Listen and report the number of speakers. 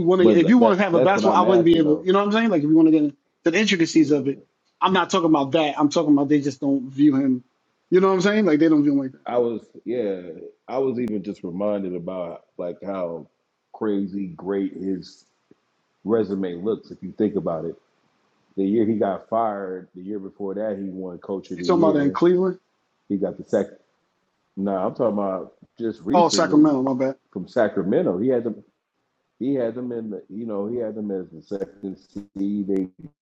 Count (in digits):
2